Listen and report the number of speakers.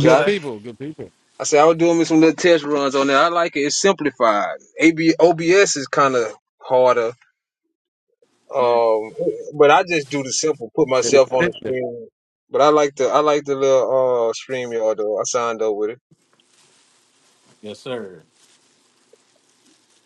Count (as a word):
three